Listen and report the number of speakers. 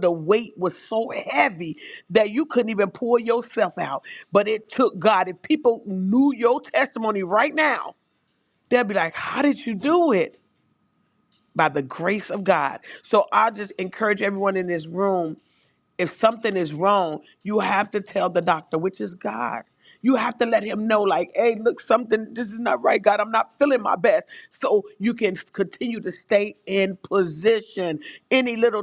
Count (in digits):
1